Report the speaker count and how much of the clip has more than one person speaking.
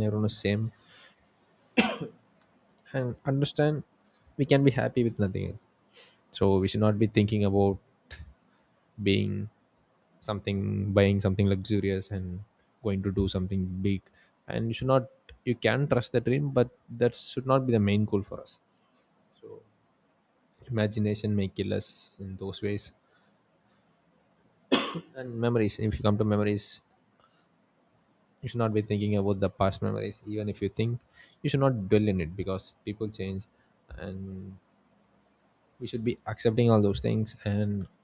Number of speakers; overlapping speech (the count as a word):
one, no overlap